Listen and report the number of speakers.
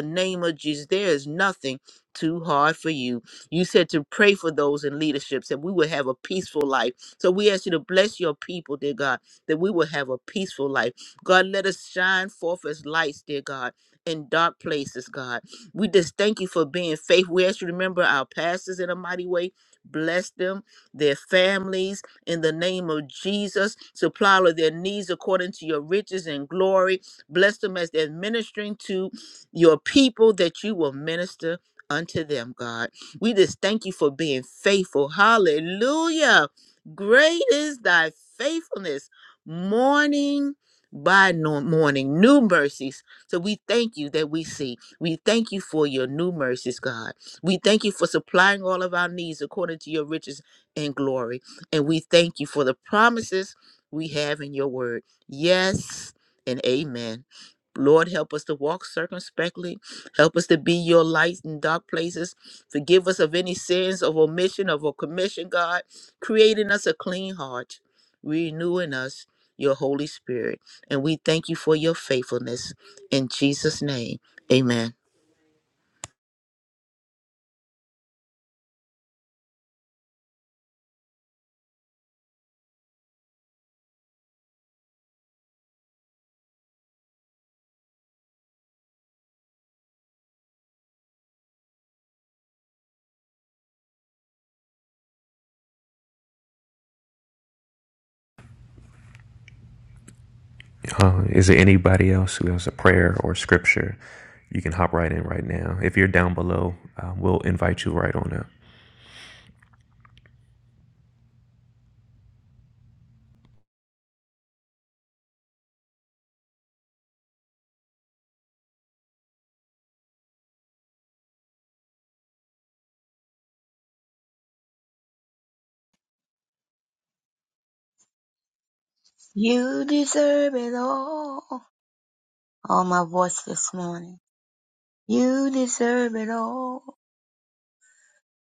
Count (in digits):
3